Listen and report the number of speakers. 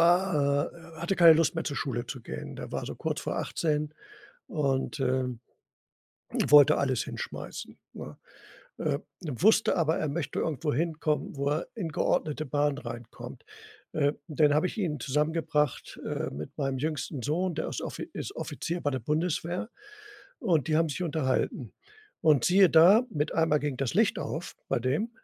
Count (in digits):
1